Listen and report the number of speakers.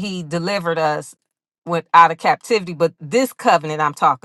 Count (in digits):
1